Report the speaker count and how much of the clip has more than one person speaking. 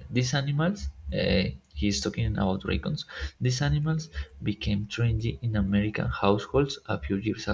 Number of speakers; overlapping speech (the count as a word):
one, no overlap